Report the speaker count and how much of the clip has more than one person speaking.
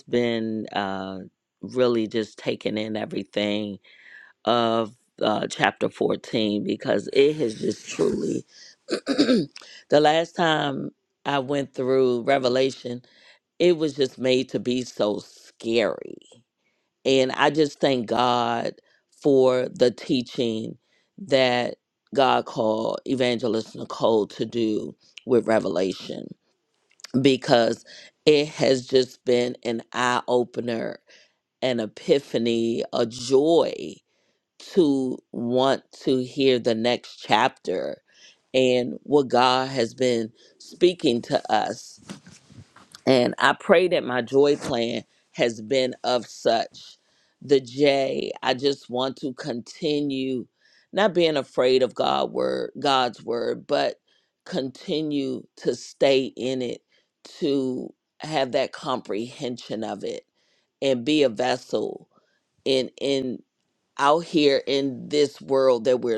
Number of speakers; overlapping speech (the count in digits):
1, no overlap